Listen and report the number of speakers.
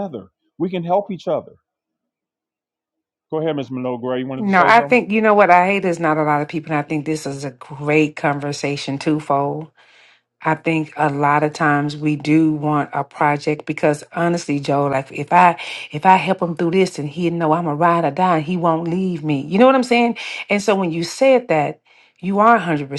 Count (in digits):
2